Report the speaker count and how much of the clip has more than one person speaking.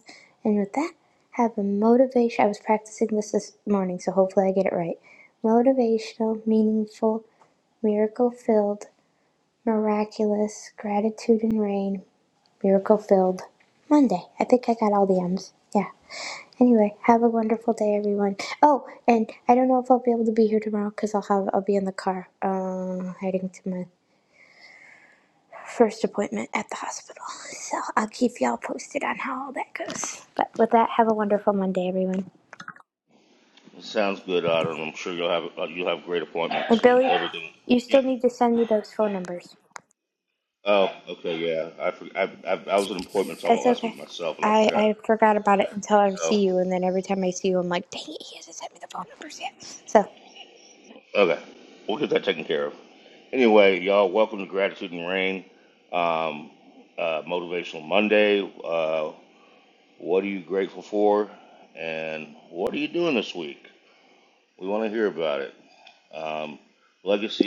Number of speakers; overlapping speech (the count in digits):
2, about 3%